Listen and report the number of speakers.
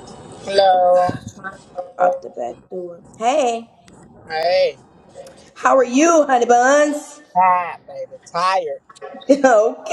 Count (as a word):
two